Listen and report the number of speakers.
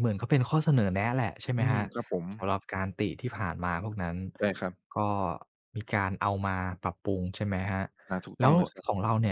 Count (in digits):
2